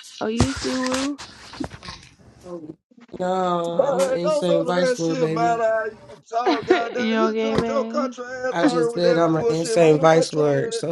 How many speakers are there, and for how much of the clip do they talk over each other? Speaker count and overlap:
3, about 50%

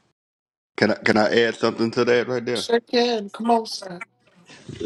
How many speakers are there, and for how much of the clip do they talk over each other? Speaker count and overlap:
2, about 2%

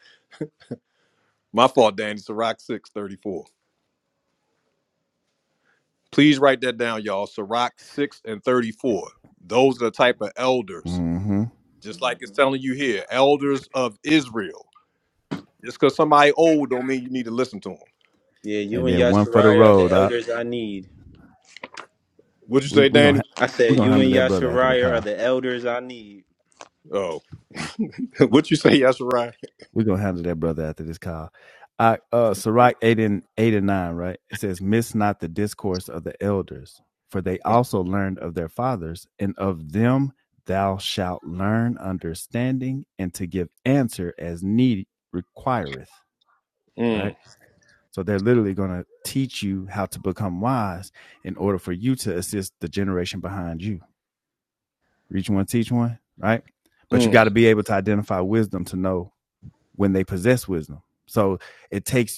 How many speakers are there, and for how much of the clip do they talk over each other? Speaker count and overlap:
3, about 6%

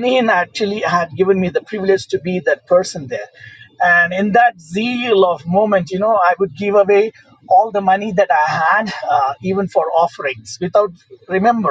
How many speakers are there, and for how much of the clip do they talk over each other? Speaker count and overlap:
1, no overlap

